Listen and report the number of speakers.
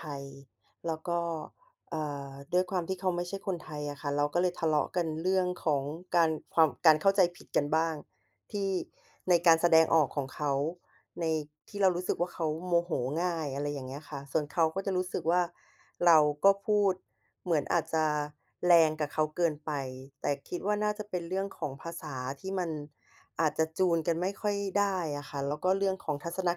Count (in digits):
1